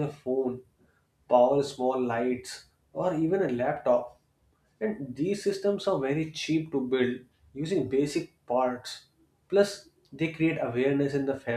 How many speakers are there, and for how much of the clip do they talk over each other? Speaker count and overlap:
one, no overlap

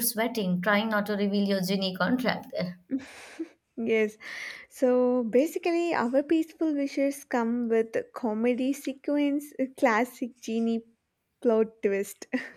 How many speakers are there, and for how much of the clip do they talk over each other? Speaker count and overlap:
two, no overlap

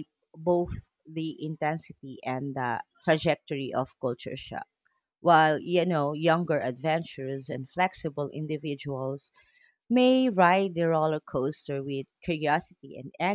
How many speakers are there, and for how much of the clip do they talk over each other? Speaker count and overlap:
one, no overlap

